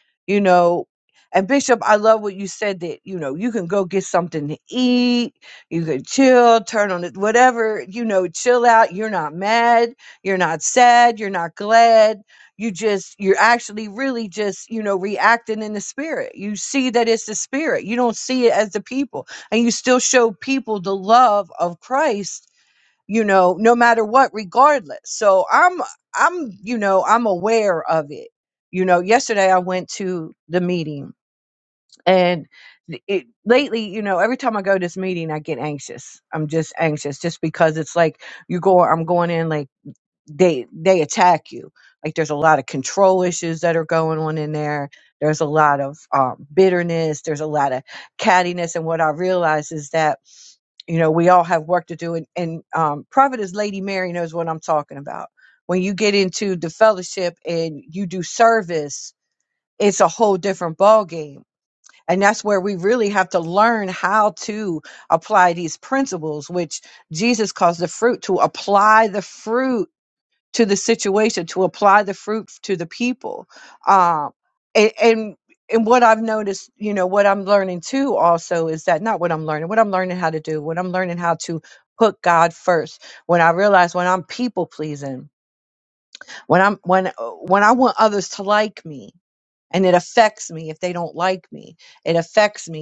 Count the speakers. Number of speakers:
1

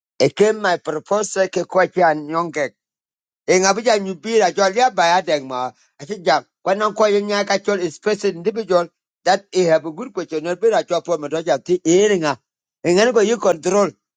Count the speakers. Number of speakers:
1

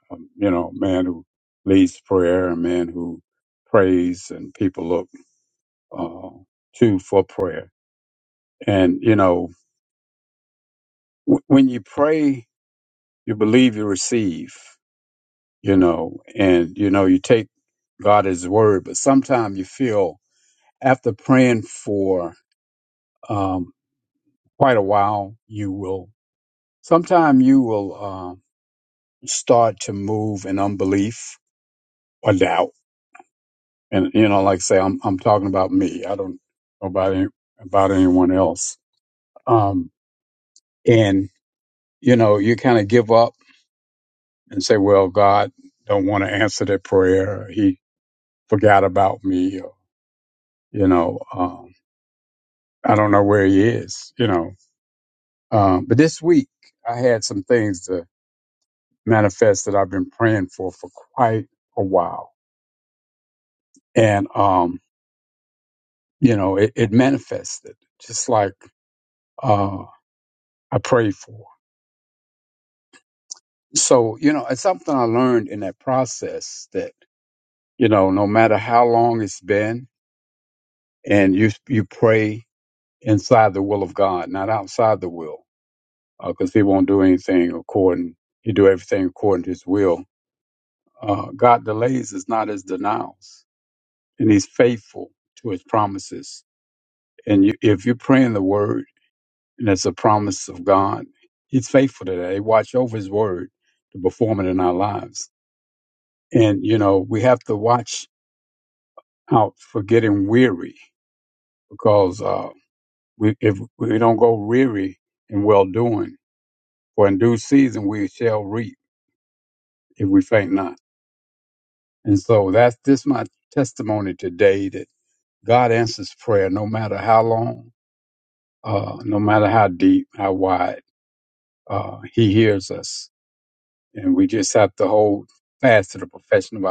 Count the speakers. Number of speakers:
1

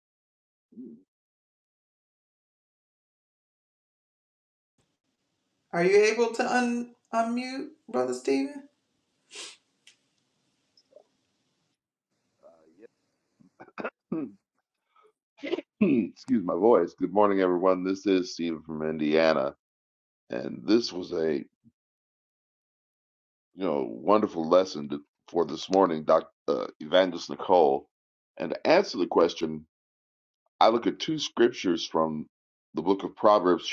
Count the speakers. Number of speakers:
2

